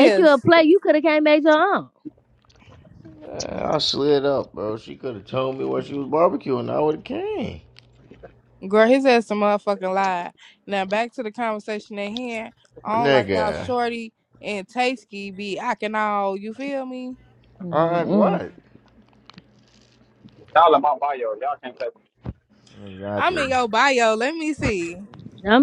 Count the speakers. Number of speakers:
4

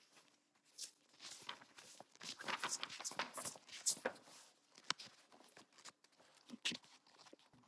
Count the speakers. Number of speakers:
0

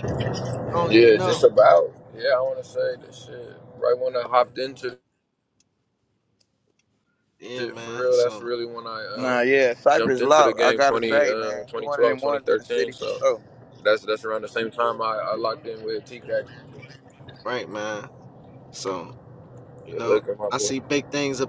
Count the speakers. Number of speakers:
3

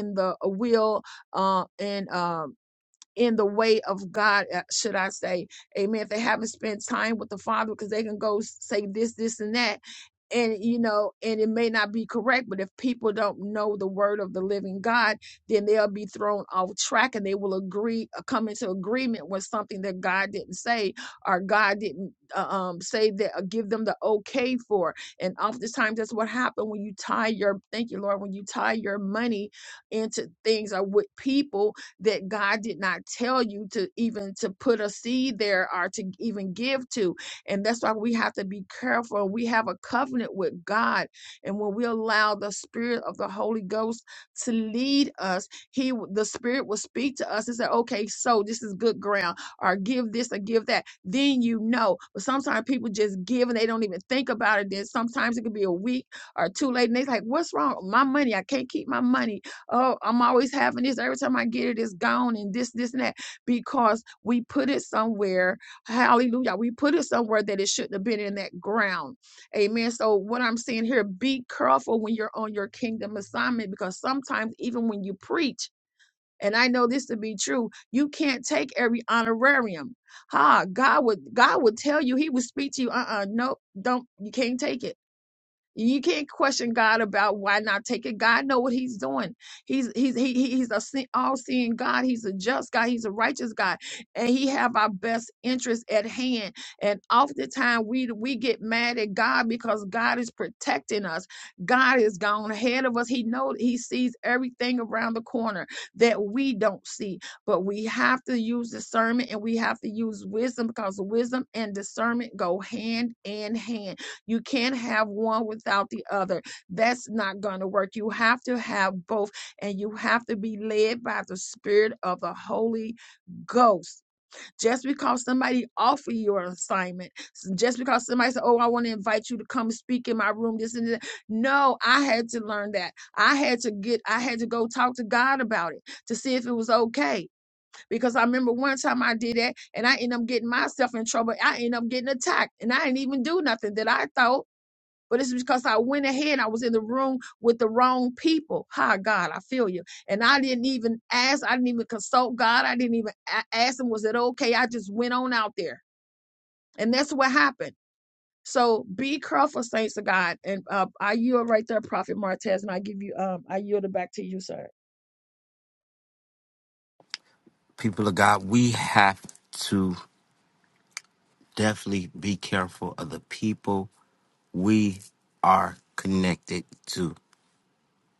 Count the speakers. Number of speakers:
2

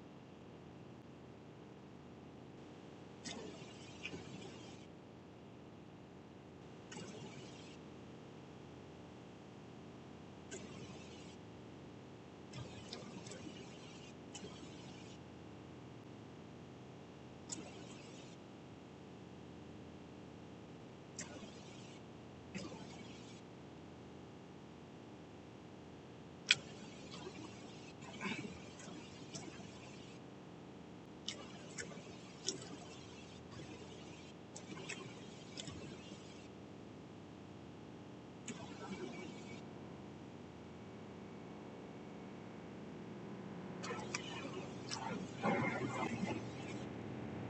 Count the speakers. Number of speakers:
0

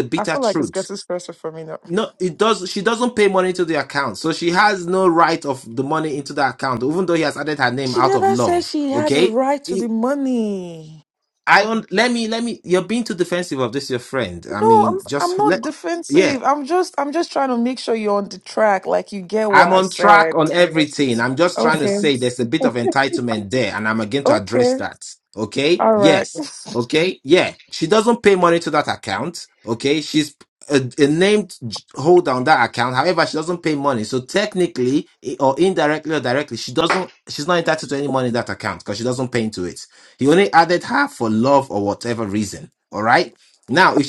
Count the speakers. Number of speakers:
2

